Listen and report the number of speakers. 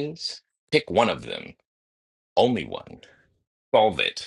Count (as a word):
one